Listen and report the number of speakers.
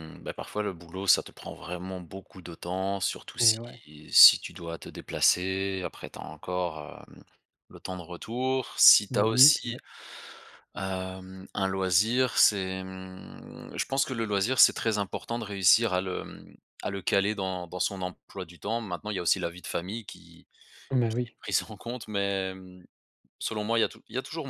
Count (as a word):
two